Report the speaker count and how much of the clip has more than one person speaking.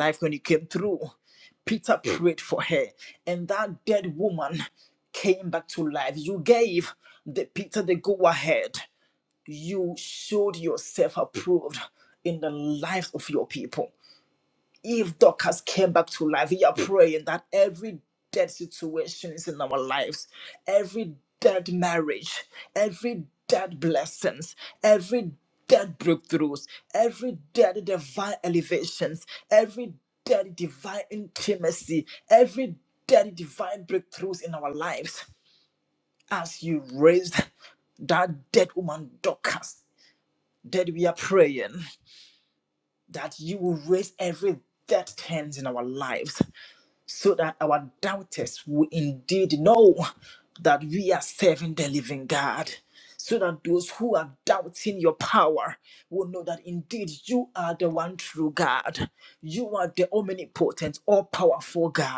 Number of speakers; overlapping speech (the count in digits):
1, no overlap